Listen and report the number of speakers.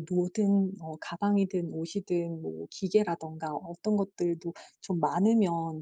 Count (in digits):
1